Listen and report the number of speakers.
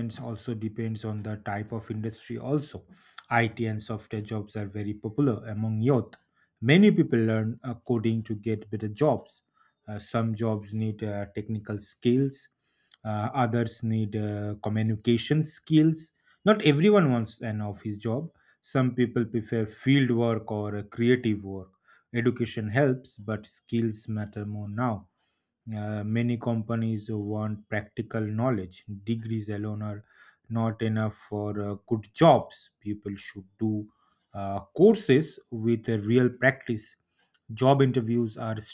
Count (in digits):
1